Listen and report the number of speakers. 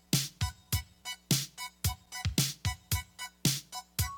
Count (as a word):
zero